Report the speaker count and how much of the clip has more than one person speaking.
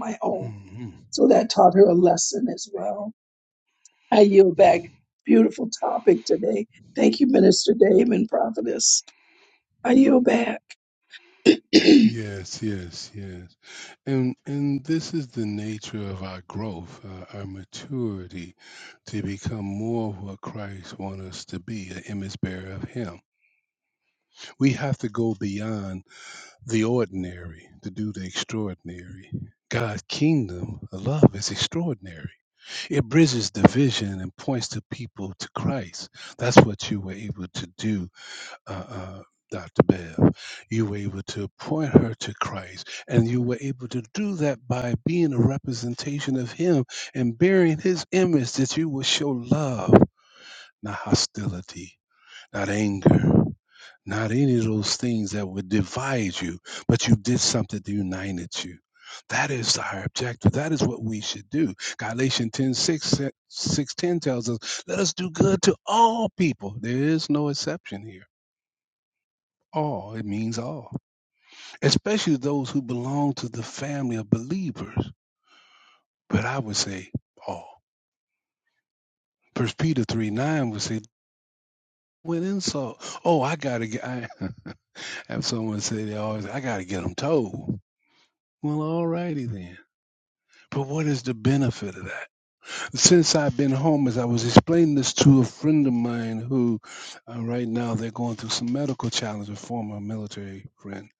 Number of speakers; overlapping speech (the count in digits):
2, under 1%